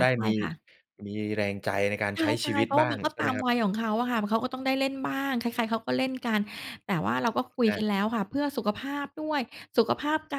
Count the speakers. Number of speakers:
two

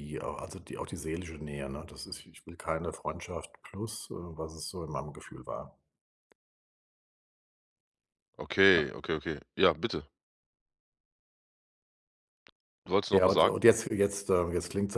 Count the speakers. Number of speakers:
two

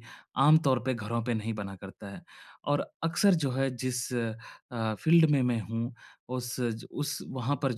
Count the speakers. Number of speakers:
one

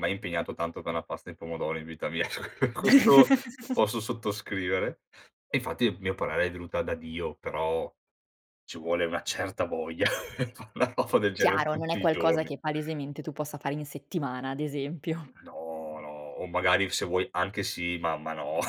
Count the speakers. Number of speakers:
two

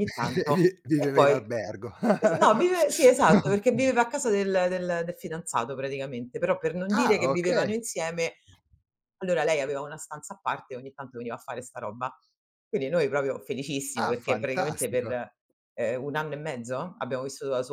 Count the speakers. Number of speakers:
two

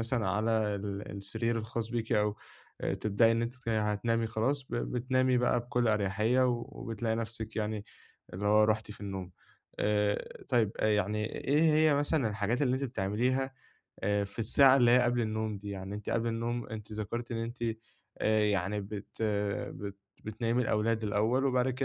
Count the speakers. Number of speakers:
one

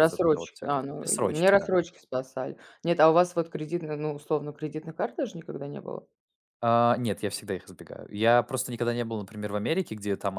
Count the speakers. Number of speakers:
two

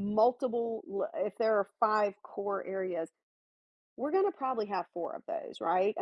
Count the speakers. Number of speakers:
one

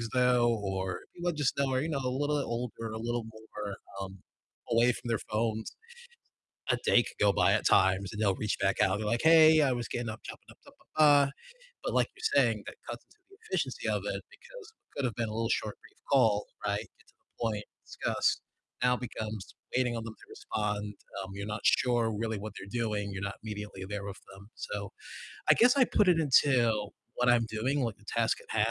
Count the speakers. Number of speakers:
one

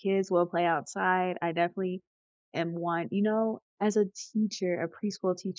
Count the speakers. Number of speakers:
one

